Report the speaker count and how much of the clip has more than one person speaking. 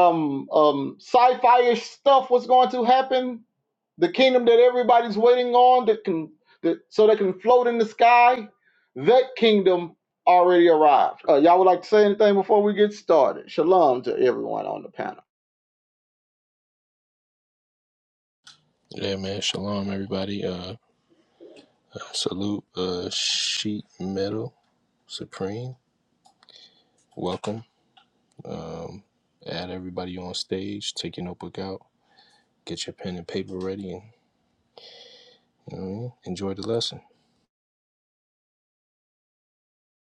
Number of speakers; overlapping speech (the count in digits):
2, no overlap